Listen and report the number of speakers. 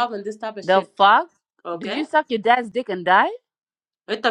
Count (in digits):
2